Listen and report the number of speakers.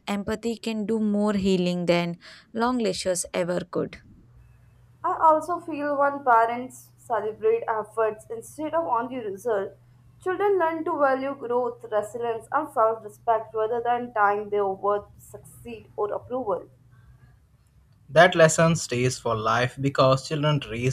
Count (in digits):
3